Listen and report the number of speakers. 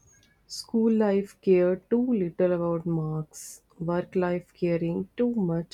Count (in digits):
1